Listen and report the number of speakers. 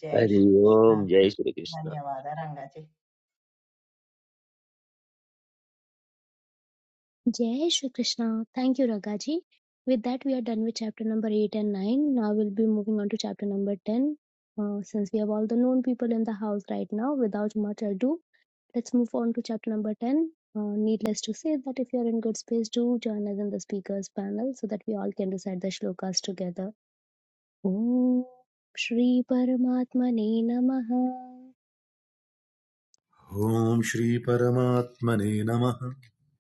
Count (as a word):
four